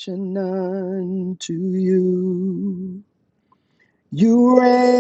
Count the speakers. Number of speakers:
1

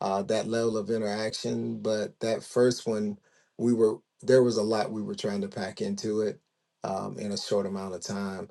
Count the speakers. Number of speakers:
1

